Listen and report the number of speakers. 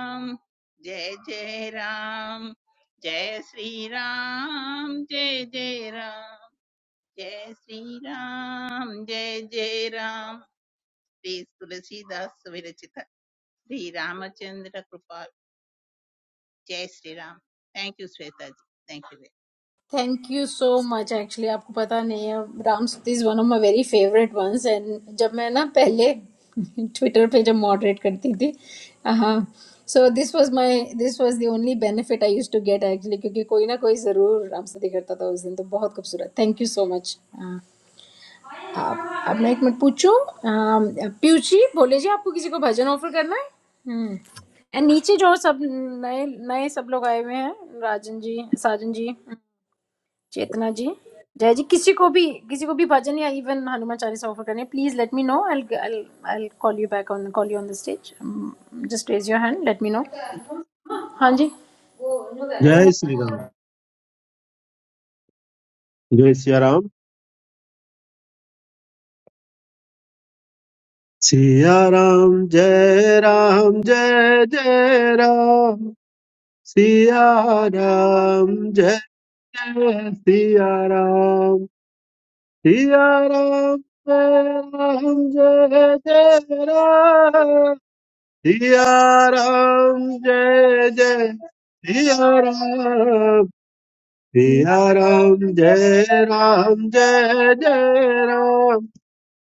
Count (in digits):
3